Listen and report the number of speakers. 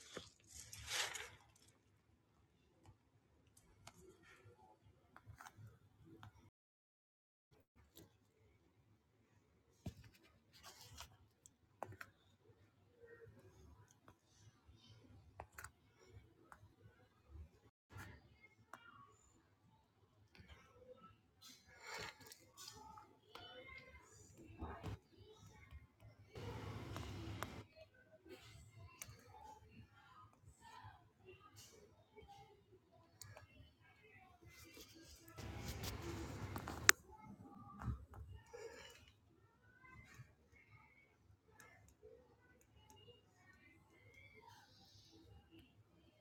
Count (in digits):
0